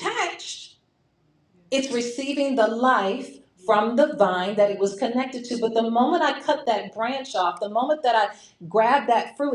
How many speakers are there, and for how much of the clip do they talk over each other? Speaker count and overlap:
1, no overlap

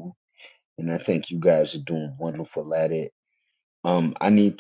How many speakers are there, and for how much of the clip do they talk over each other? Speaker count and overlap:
1, no overlap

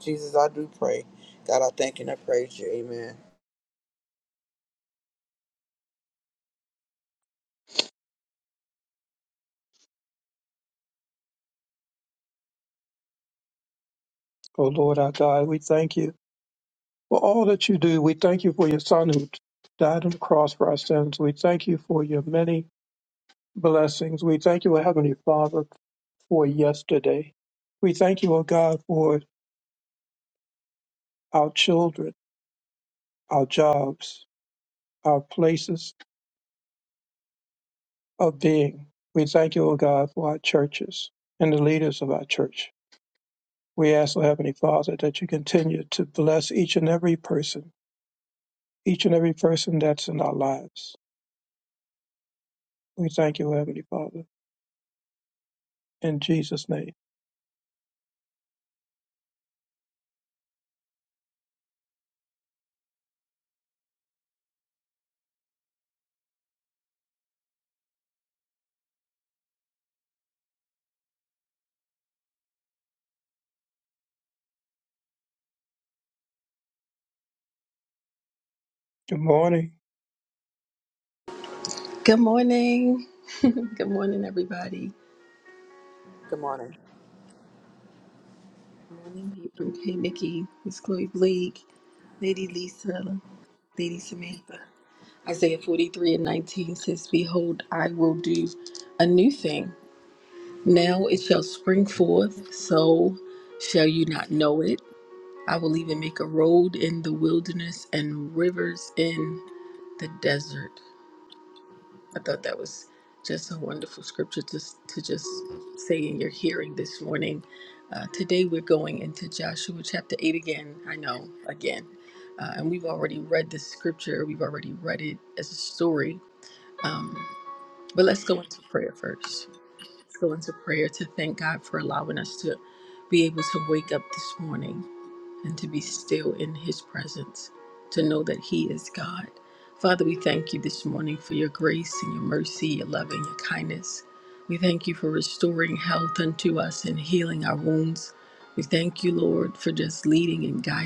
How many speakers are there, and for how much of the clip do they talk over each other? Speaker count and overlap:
3, no overlap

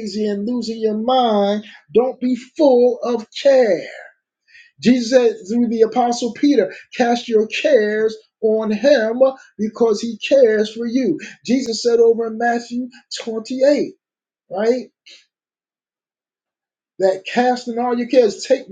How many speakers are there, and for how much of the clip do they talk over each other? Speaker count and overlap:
1, no overlap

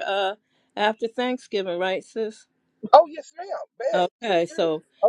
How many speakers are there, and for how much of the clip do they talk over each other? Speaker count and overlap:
2, about 15%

